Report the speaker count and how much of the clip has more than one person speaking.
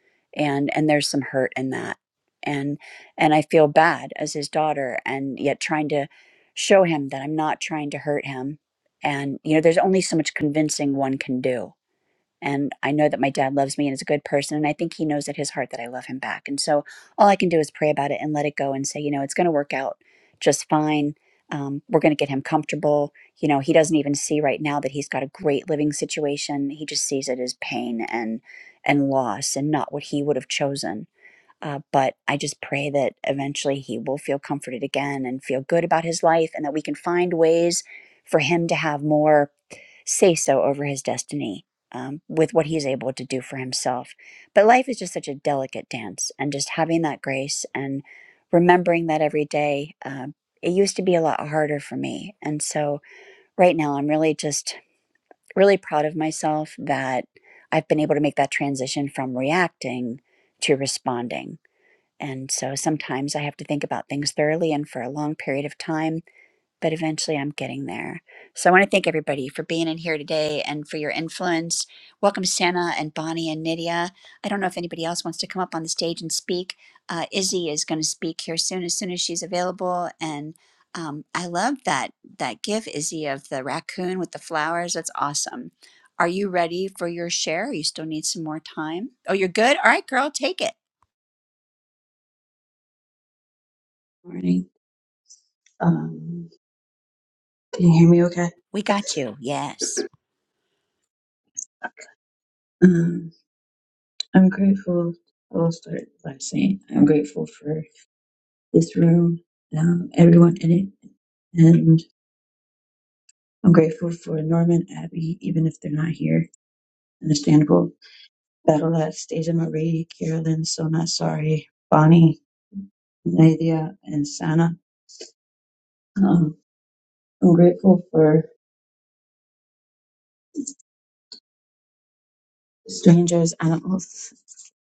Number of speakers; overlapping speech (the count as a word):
two, no overlap